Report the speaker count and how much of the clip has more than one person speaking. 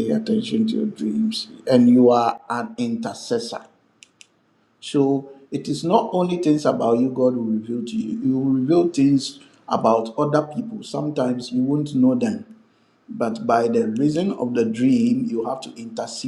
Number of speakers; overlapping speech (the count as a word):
one, no overlap